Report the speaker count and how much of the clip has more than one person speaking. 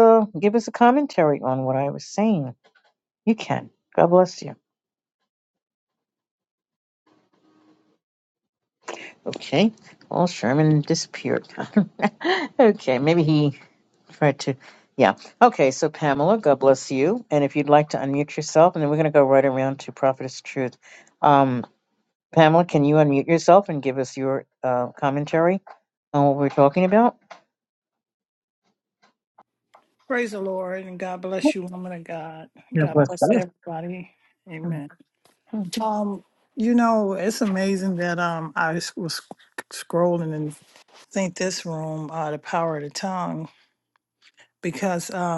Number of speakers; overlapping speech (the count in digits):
2, about 1%